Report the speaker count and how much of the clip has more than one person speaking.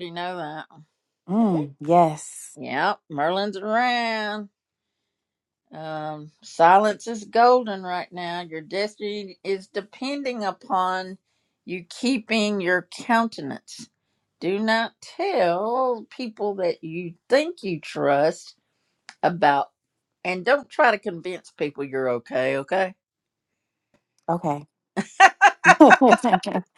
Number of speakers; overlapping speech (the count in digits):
2, no overlap